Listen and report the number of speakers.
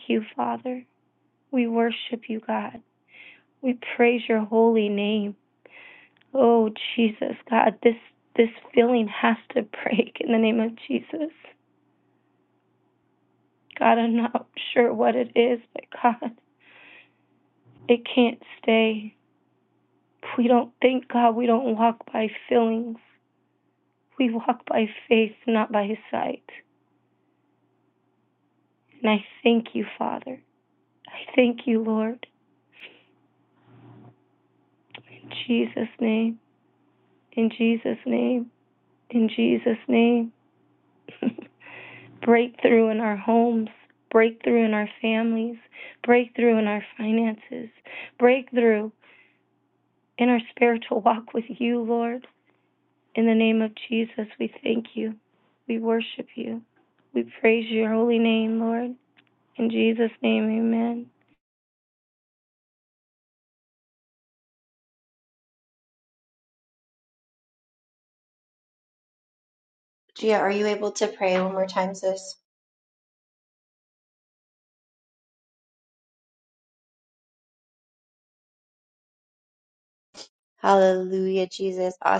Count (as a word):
two